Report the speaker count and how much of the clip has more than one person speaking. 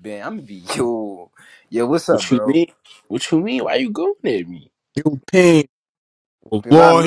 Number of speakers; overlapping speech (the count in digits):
3, about 13%